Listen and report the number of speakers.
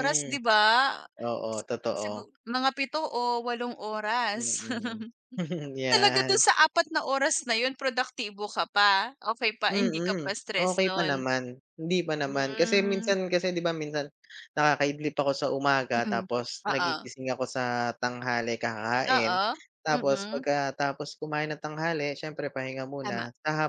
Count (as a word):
two